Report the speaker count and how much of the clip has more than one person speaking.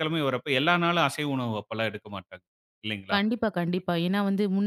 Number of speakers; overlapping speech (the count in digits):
2, about 2%